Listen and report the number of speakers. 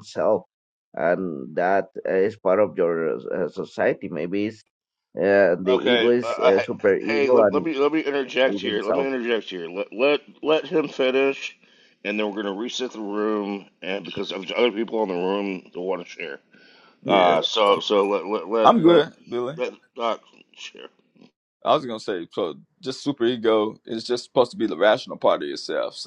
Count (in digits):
3